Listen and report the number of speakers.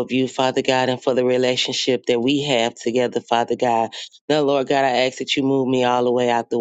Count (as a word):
one